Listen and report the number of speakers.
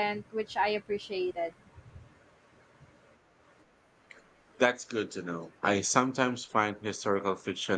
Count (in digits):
2